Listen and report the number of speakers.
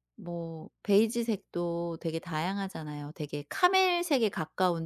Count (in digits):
1